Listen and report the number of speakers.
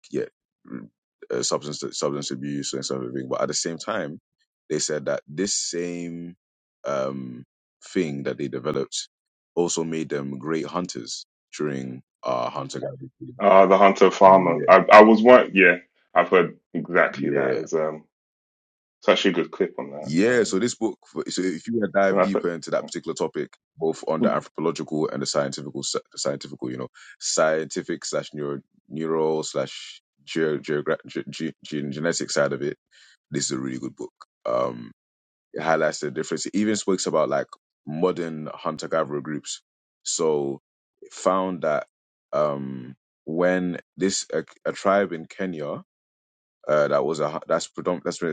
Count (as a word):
two